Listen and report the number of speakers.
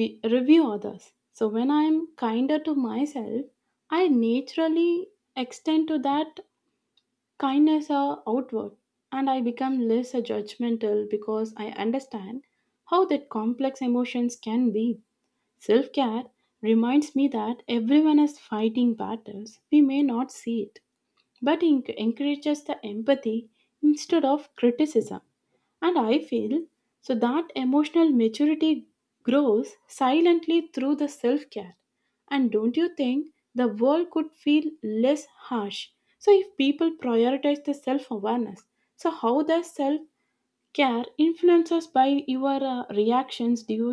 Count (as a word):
one